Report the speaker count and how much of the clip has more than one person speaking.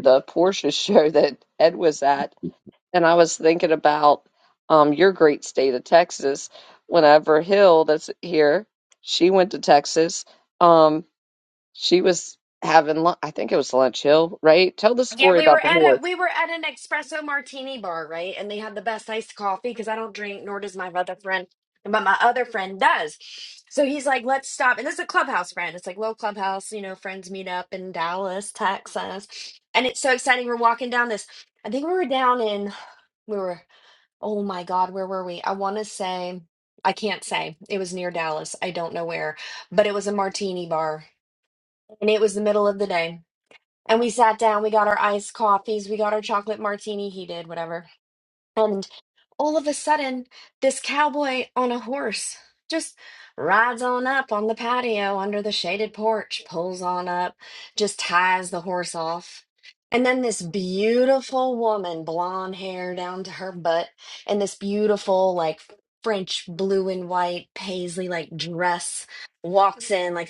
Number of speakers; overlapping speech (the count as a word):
two, about 1%